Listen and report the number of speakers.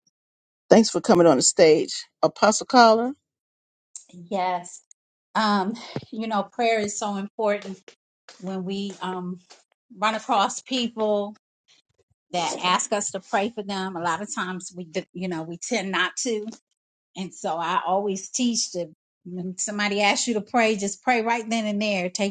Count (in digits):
2